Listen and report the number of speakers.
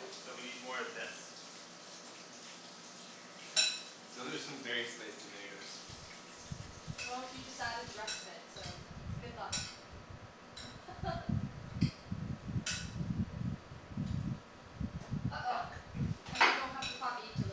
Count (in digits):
3